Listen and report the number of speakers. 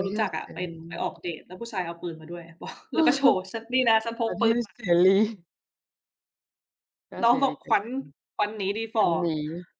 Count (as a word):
two